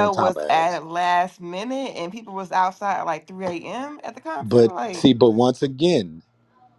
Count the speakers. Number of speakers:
two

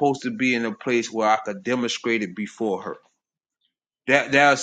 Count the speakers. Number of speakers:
one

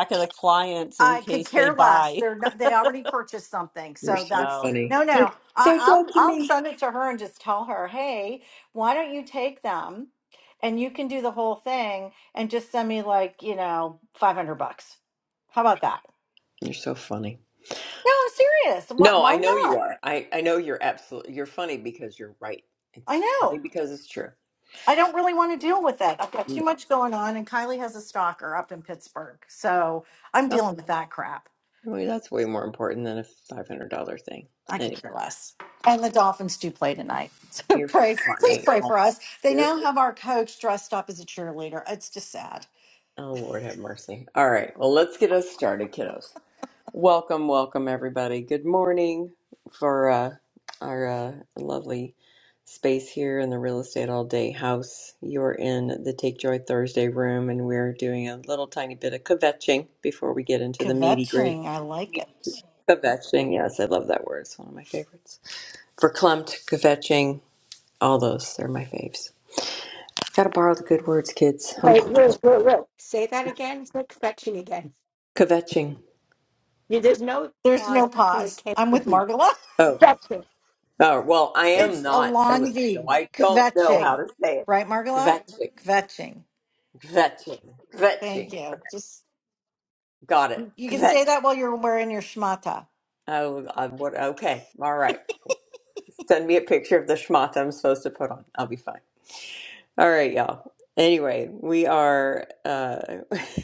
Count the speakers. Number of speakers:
four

